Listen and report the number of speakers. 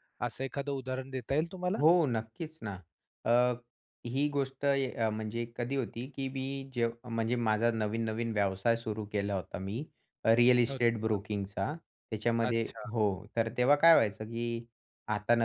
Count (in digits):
2